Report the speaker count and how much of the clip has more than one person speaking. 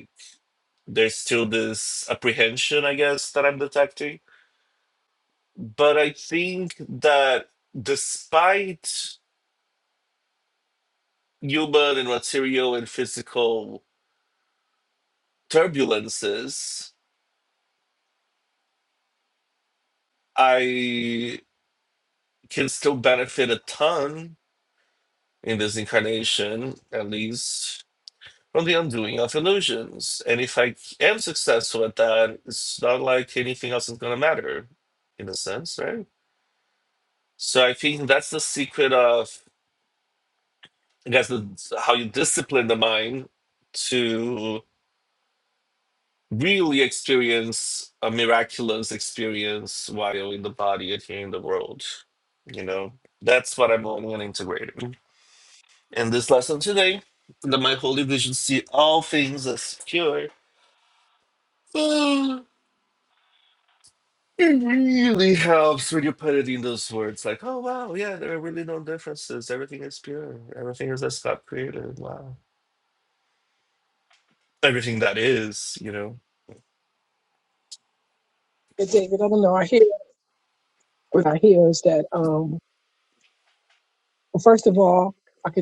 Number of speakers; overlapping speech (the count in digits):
2, no overlap